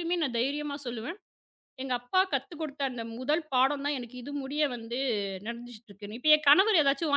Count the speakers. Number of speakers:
one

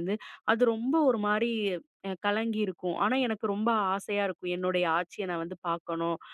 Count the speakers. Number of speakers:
one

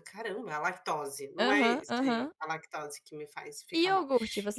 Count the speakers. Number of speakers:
two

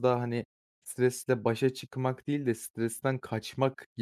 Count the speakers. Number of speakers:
one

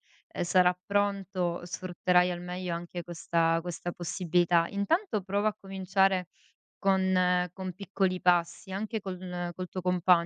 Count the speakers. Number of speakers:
one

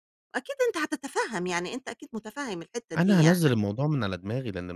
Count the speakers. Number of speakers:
two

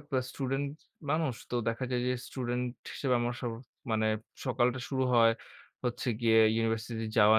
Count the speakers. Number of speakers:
one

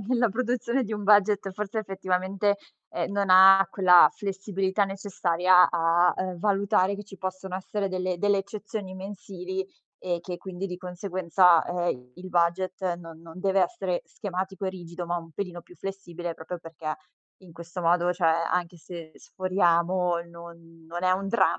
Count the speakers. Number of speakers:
one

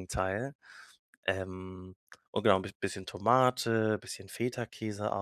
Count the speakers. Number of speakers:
one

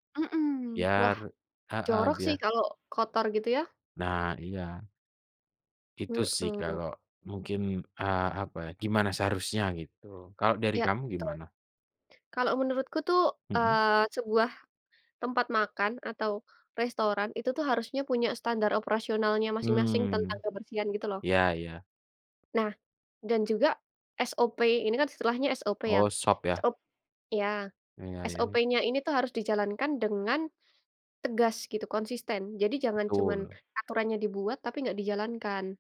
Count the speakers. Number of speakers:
two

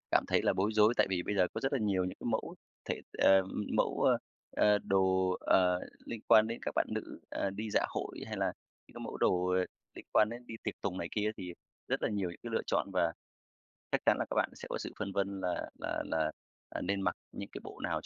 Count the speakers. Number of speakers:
one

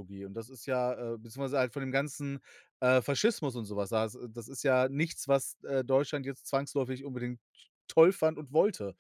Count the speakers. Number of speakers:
one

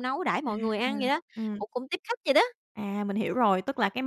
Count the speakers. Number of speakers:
two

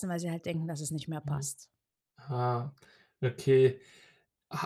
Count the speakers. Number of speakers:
two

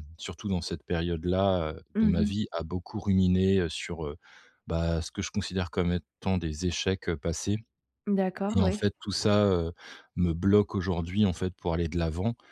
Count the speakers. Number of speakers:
two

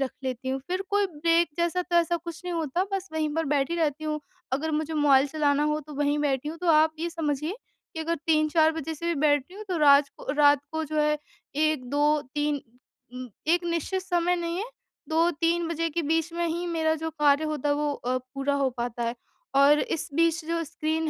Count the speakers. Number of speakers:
one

